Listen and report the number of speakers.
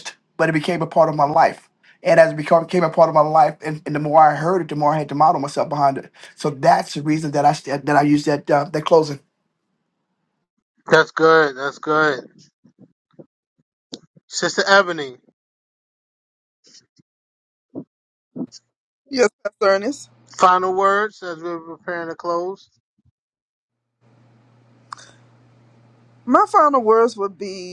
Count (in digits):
3